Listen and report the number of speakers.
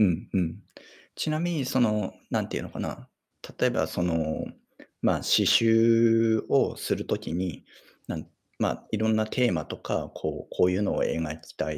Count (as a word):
one